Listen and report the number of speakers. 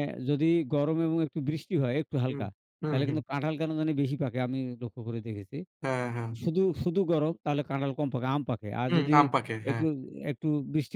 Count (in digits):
2